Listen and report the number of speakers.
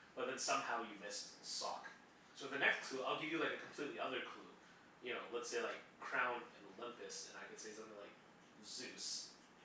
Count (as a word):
one